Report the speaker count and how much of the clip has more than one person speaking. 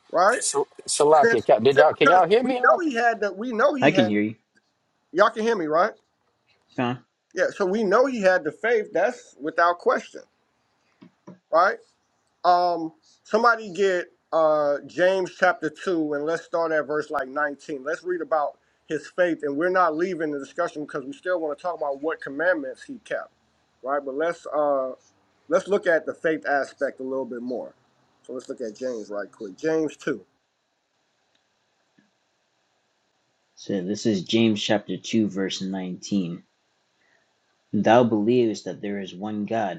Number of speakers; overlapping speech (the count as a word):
three, about 4%